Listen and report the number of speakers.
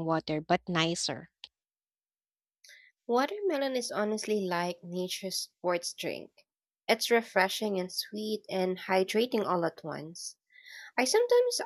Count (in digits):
2